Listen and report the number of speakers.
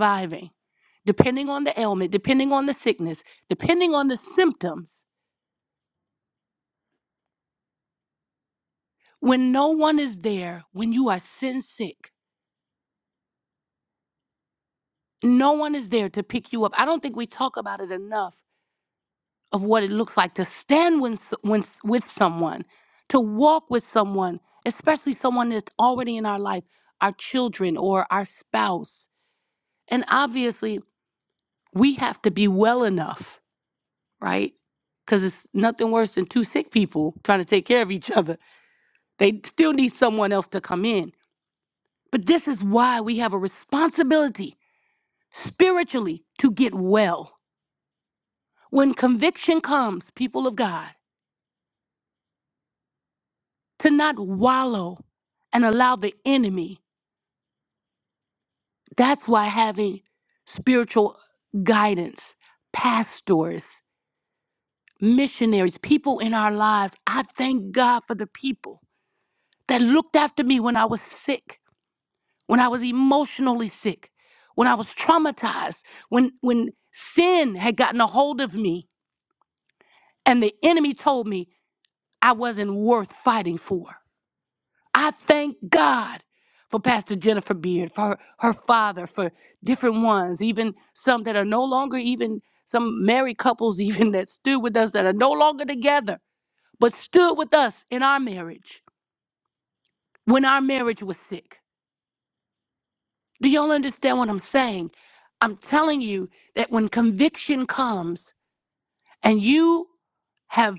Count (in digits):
1